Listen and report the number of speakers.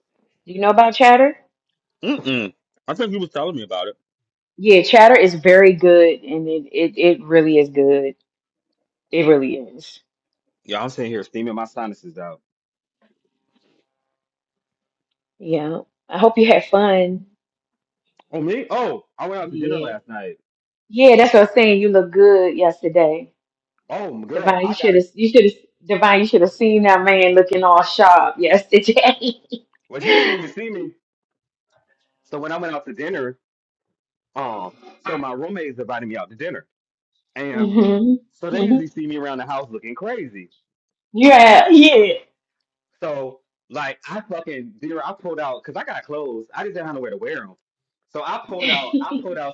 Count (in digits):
2